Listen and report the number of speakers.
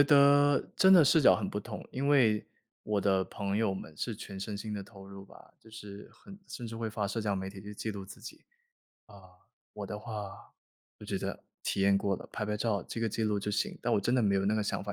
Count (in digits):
1